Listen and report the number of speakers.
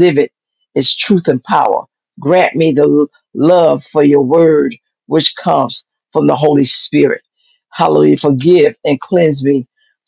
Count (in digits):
1